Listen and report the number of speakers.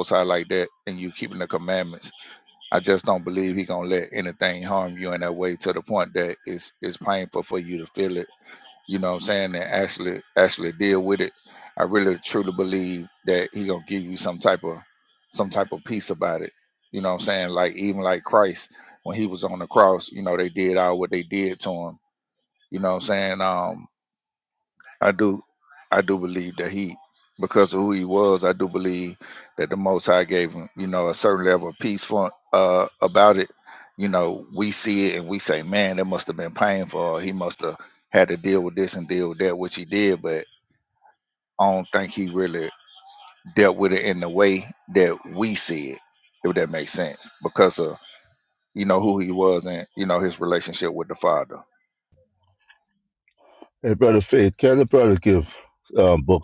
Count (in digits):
2